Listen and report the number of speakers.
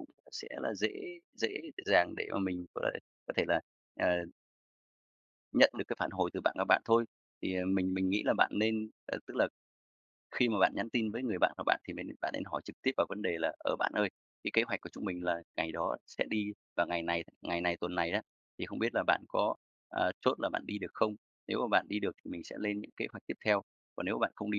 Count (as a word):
one